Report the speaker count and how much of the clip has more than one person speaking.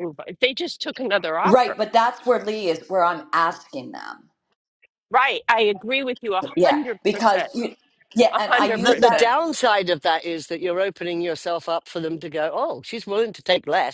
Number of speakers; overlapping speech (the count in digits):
3, about 13%